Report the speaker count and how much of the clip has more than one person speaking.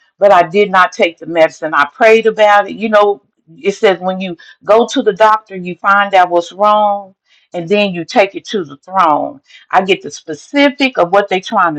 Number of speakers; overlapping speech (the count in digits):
1, no overlap